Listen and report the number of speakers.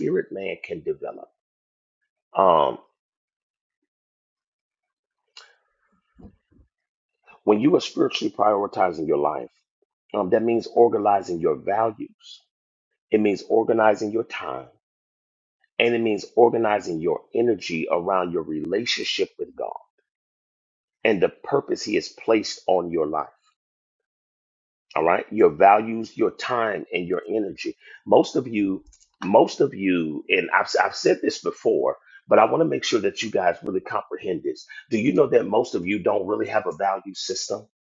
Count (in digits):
1